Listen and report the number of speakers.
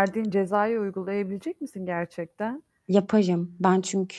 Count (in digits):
2